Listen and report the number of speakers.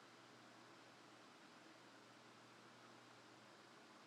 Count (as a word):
zero